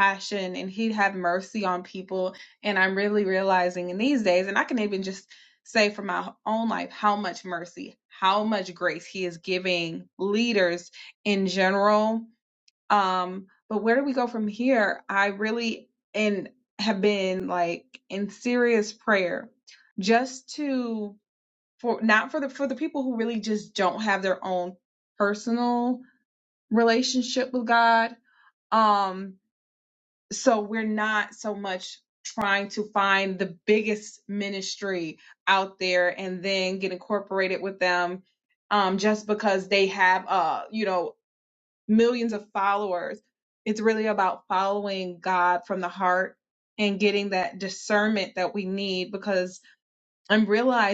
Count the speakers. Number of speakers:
one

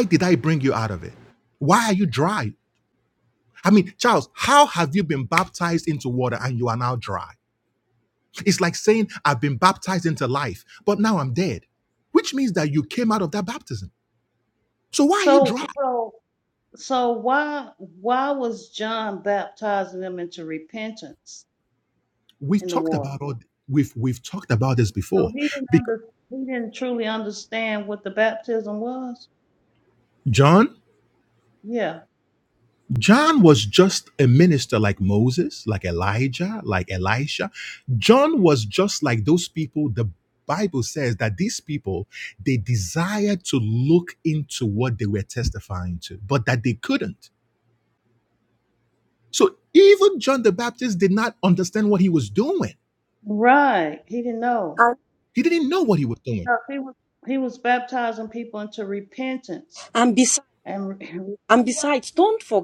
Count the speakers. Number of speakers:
three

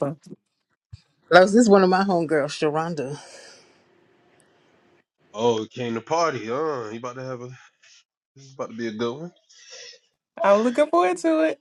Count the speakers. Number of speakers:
three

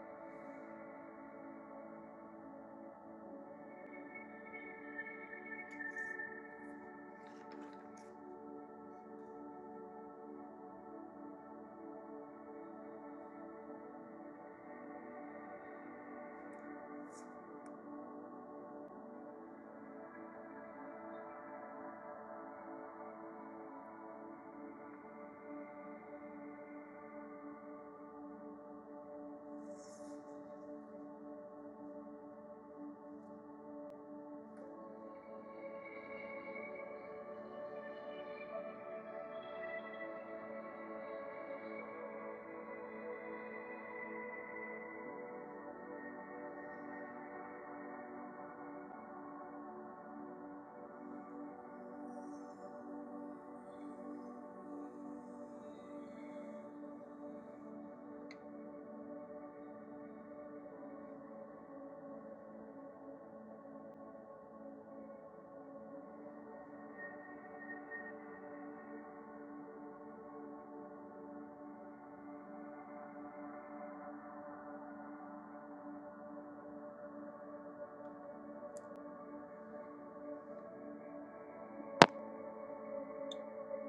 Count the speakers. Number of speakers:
zero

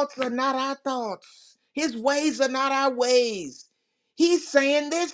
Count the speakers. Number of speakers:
one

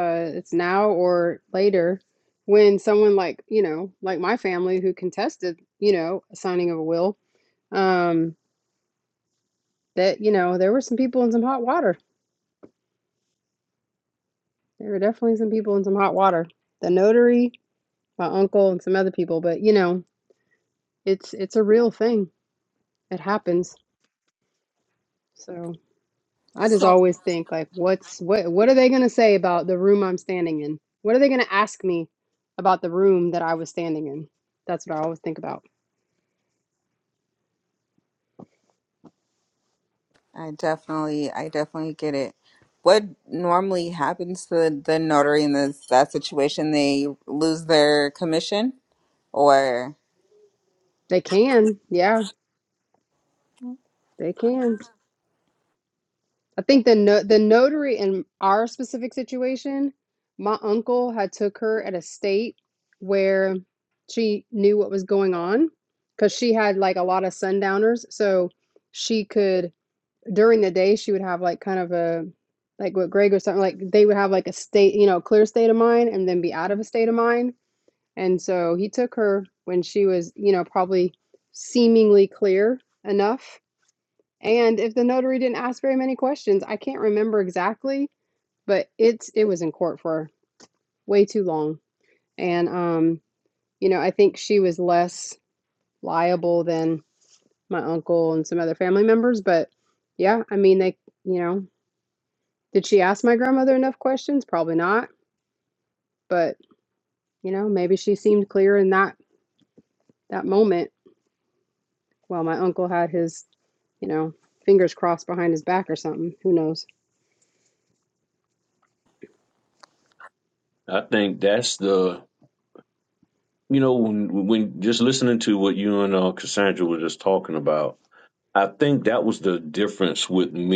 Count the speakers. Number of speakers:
three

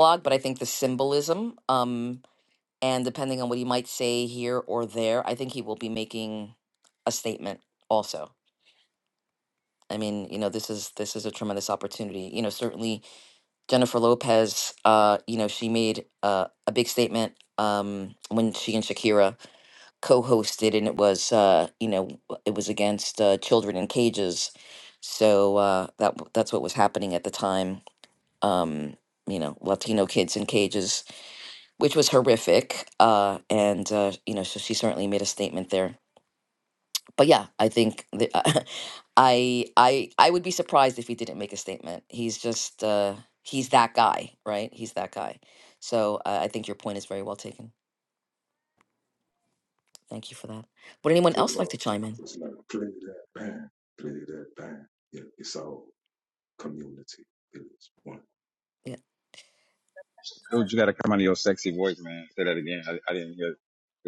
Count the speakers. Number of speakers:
three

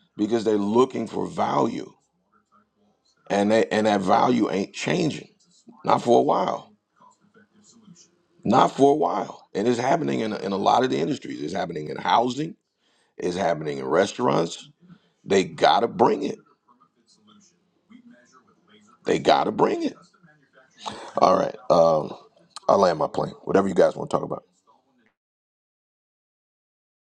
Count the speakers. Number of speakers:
one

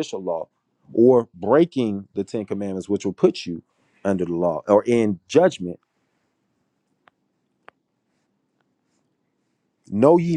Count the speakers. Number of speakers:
one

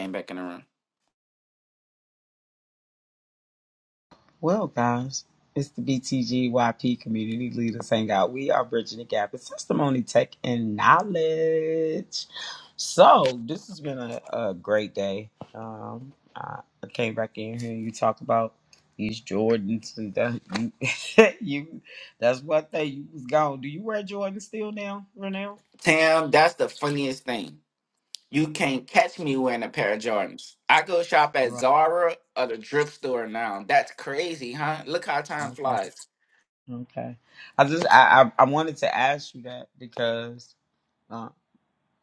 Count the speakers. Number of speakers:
two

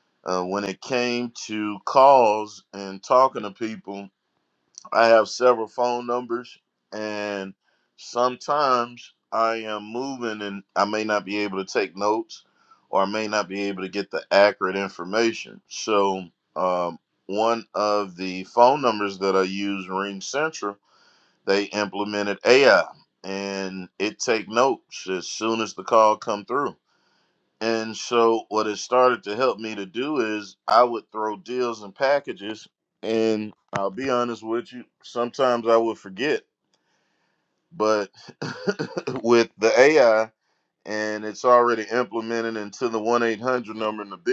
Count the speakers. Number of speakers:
one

